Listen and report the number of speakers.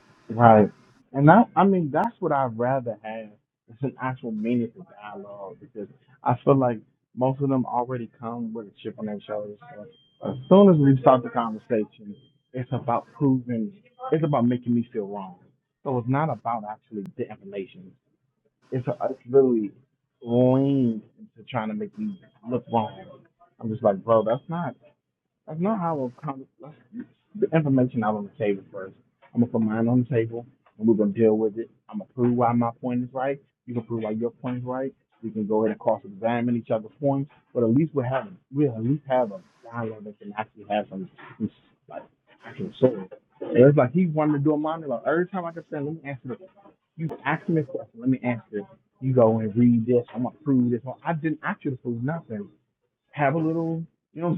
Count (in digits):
1